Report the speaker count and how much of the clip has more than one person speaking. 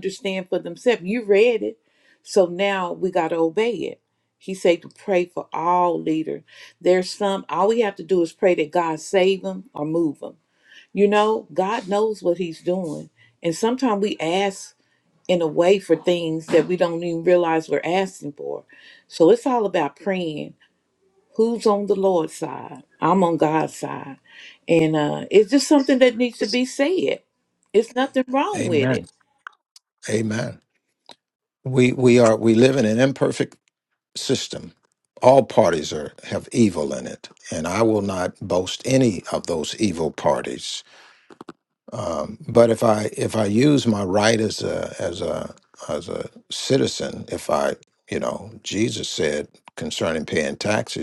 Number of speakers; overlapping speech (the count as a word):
two, about 1%